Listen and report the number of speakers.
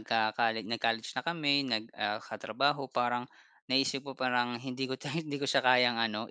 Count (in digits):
1